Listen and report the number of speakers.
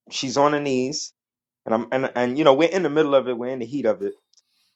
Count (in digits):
1